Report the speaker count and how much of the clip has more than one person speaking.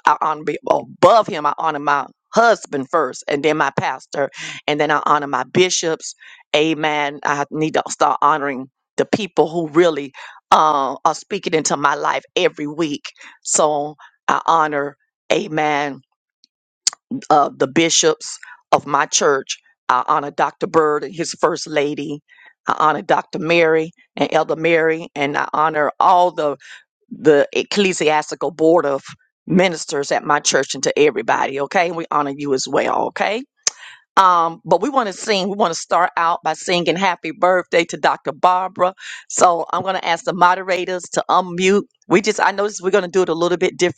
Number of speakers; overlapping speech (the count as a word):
one, no overlap